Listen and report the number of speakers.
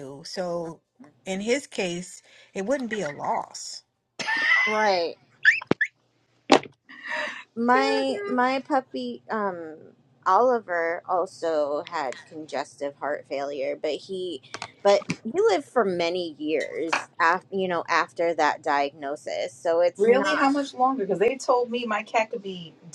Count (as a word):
three